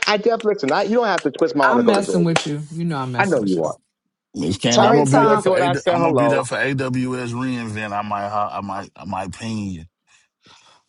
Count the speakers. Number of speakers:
3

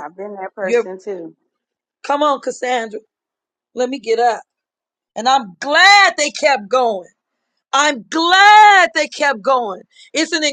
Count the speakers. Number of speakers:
2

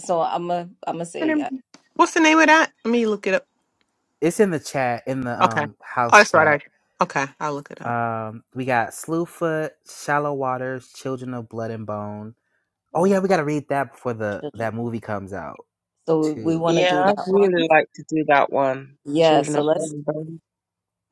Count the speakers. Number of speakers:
4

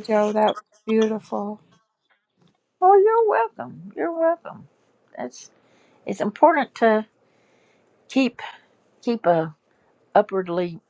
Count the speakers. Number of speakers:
2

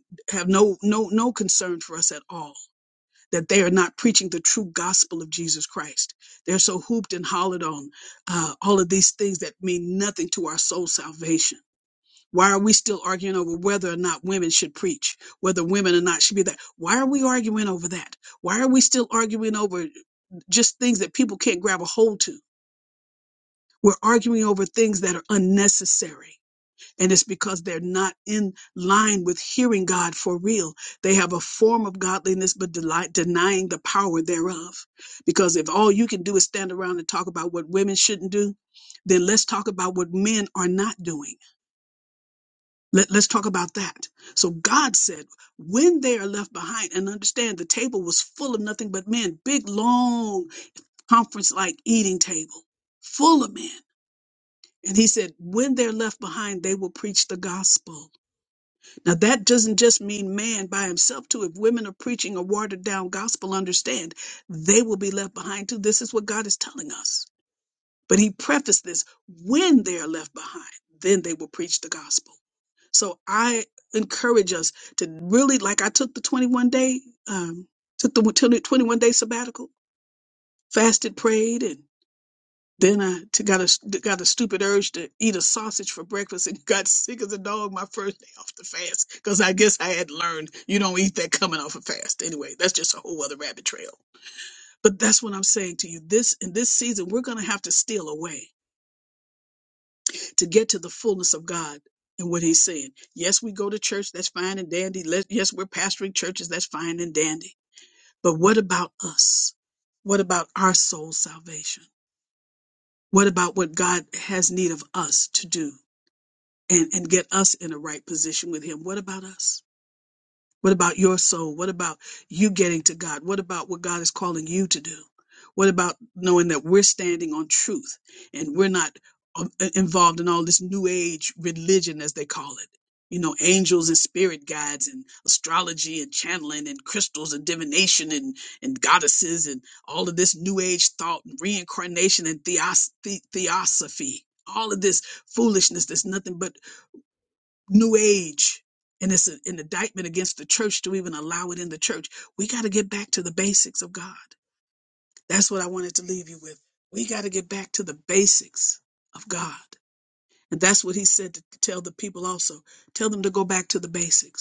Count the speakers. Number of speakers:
1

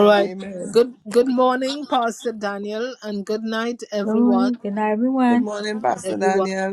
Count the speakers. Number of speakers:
3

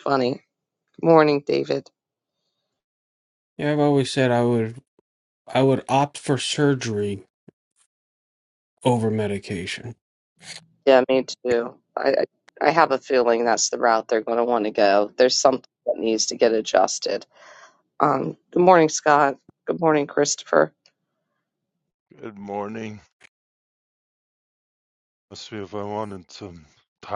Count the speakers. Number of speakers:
3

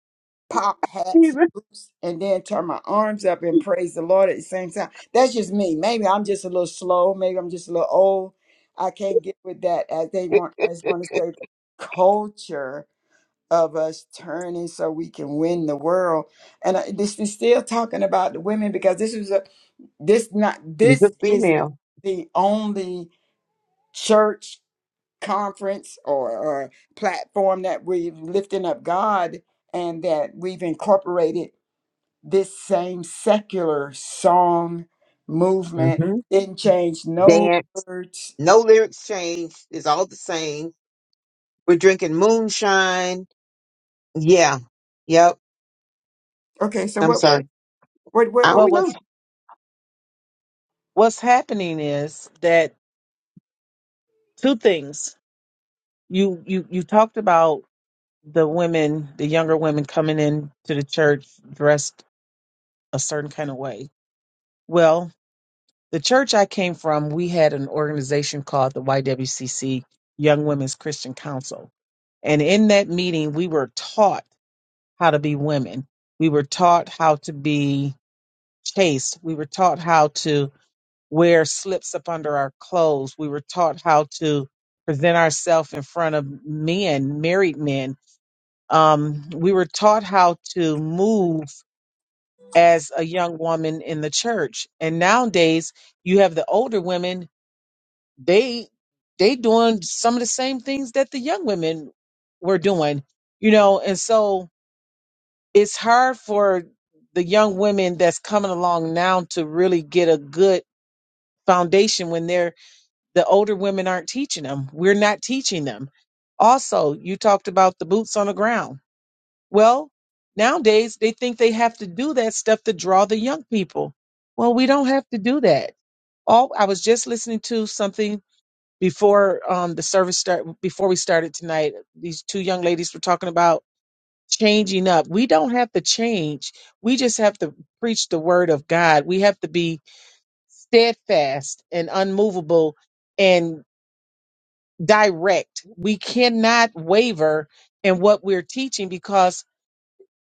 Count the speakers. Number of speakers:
3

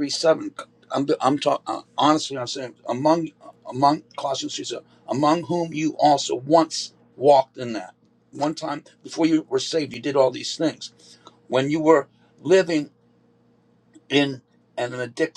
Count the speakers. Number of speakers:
1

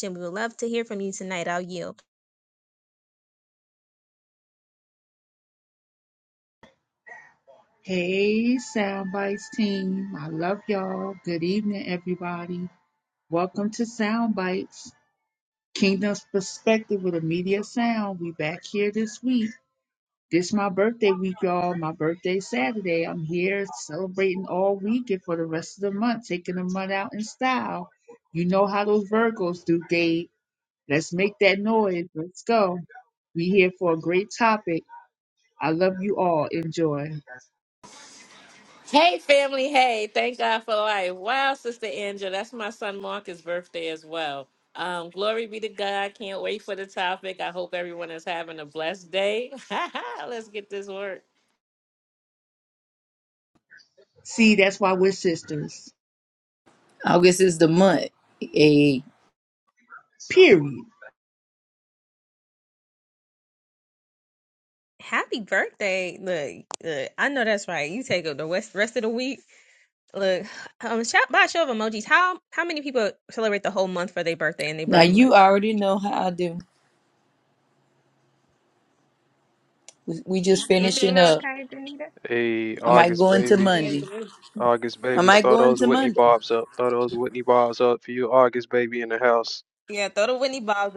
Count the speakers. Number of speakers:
5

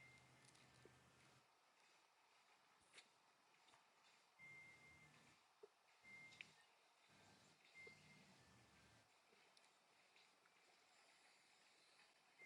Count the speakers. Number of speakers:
0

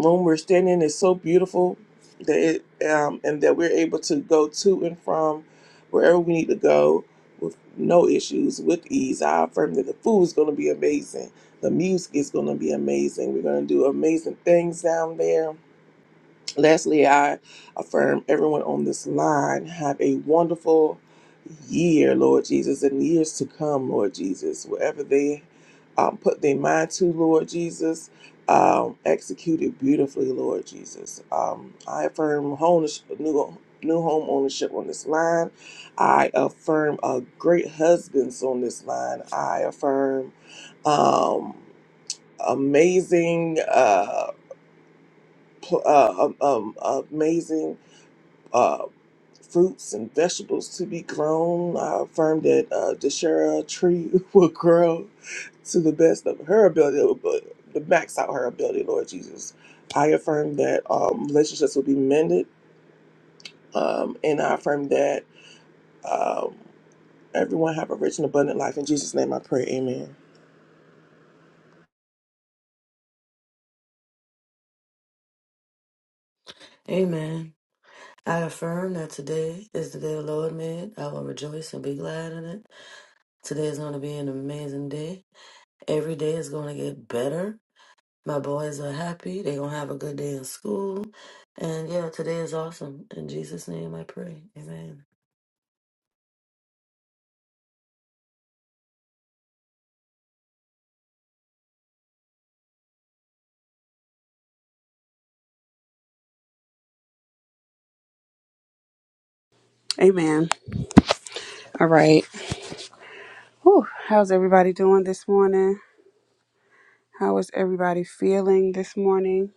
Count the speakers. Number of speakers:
3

